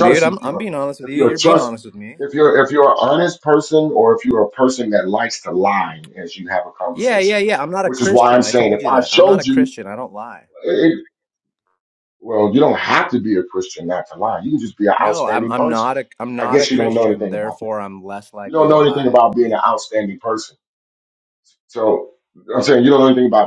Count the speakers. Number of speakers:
2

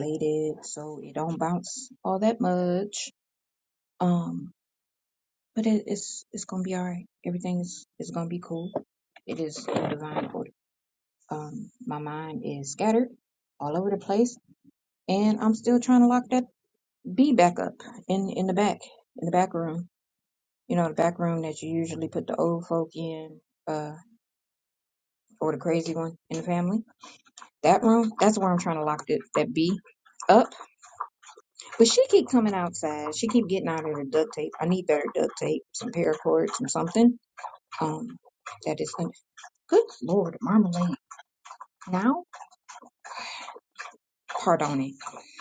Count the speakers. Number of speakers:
1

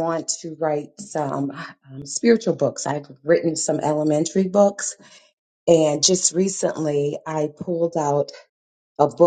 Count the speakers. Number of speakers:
1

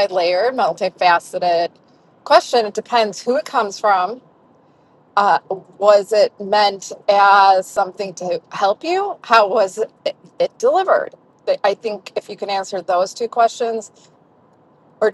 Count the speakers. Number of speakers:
1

